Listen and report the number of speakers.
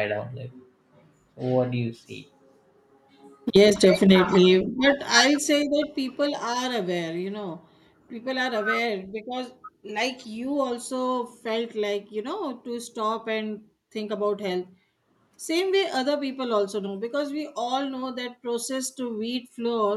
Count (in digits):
2